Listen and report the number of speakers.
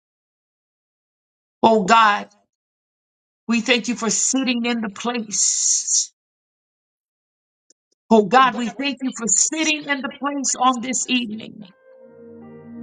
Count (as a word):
one